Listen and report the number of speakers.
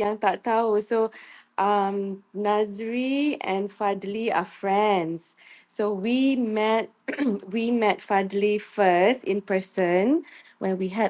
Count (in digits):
1